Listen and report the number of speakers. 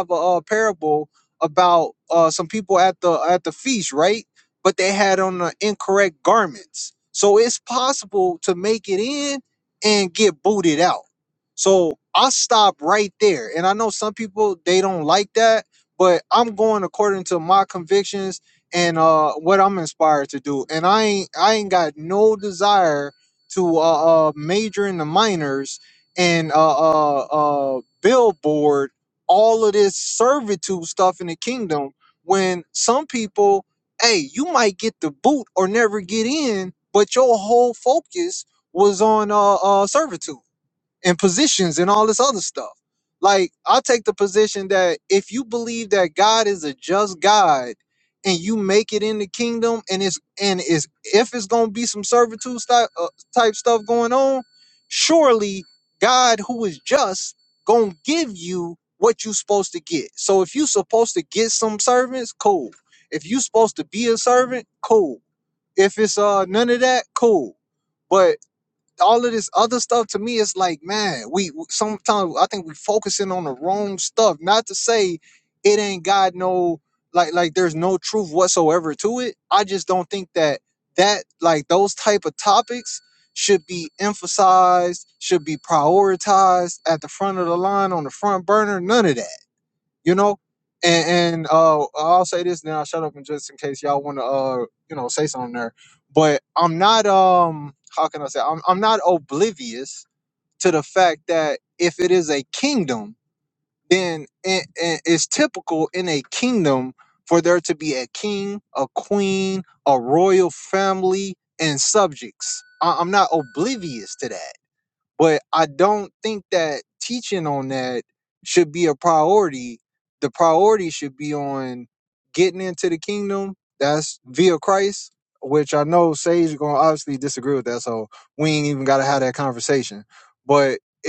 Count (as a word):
one